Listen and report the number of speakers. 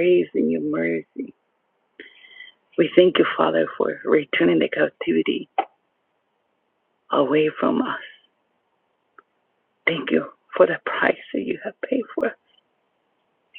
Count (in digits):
1